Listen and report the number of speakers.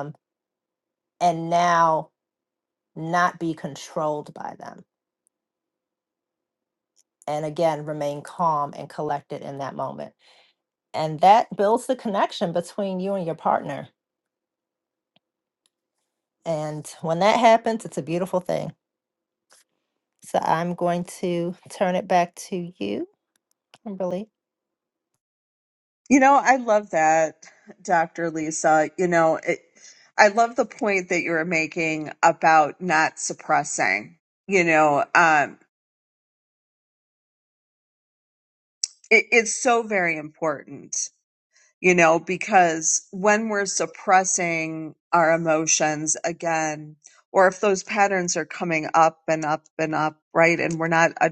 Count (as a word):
two